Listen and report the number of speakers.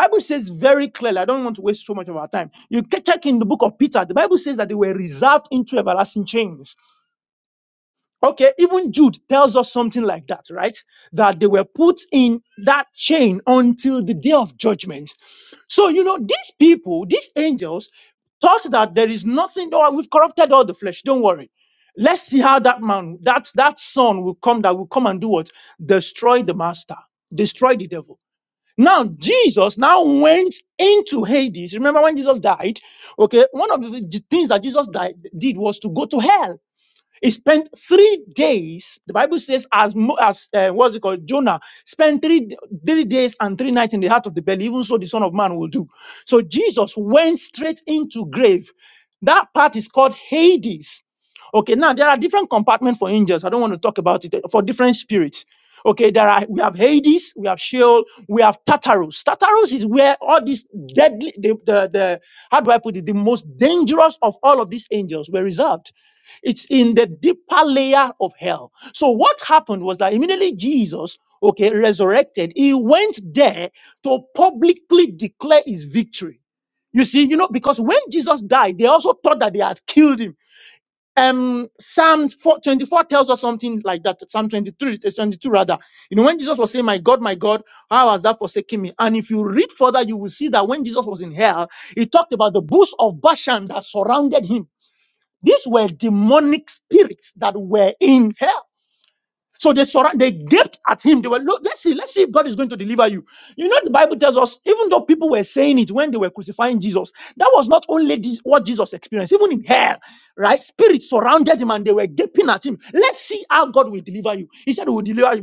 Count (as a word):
one